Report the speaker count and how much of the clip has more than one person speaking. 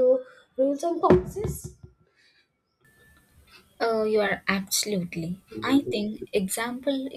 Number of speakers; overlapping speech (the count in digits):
2, no overlap